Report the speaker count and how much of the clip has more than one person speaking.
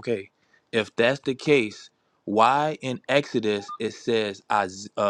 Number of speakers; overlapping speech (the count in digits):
1, no overlap